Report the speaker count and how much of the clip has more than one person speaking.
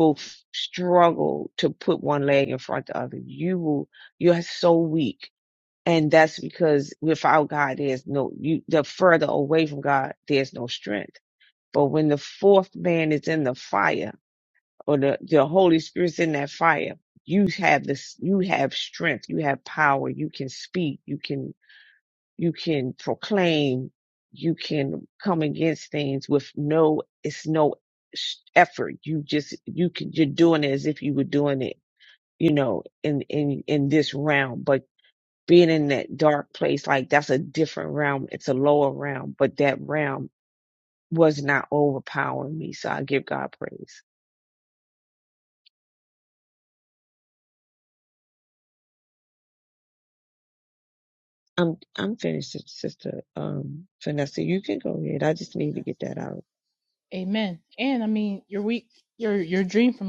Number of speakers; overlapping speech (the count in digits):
2, no overlap